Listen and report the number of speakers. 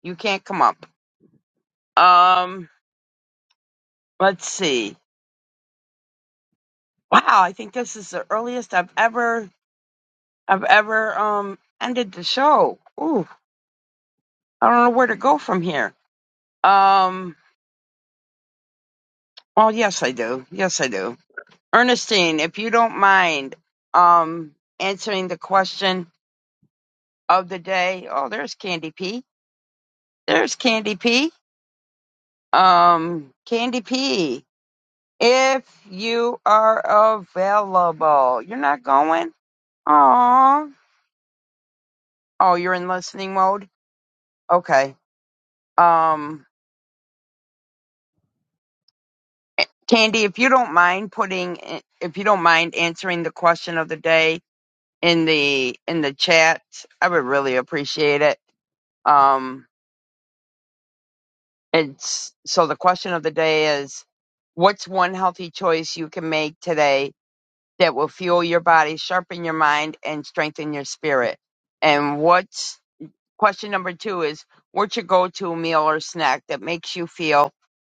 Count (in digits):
1